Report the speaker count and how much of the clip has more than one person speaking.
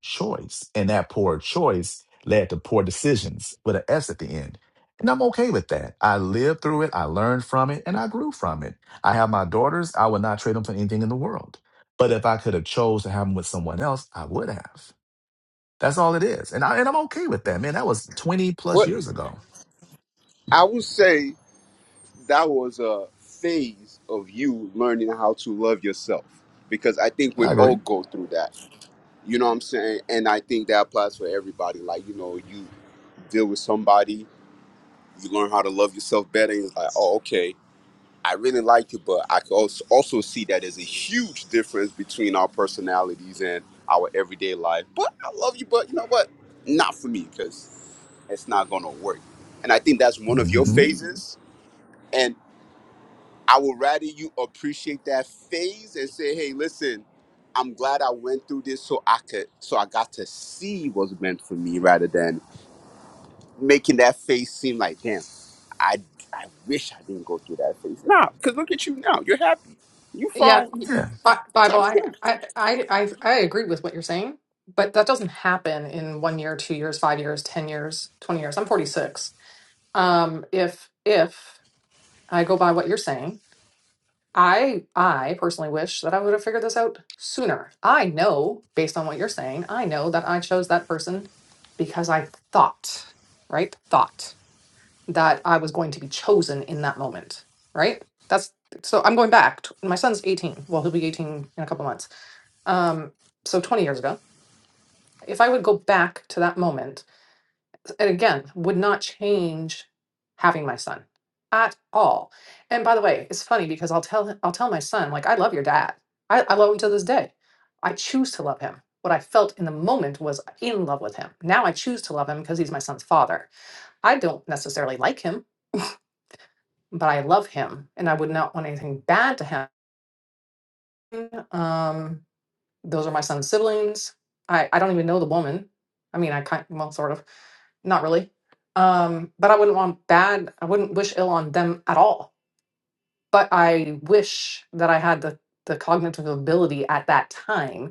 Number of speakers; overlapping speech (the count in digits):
3, about 1%